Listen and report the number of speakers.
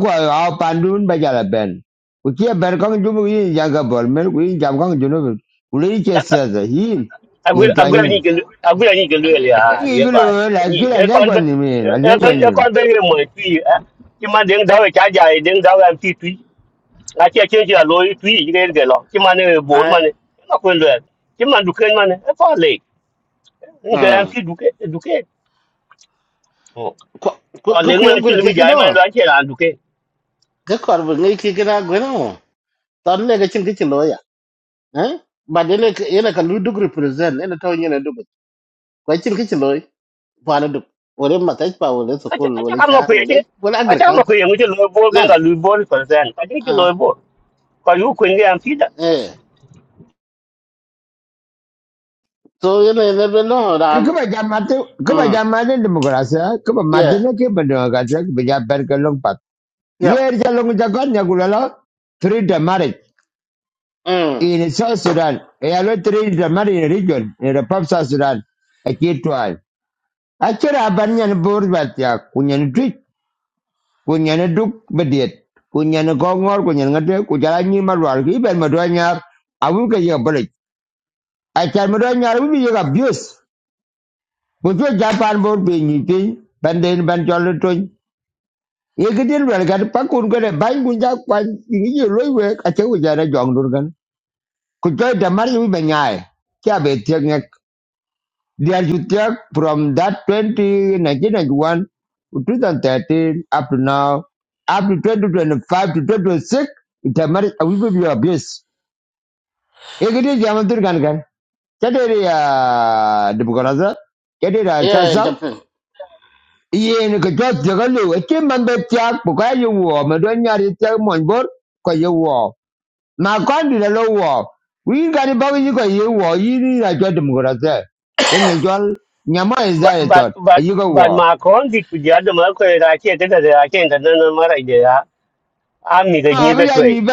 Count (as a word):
three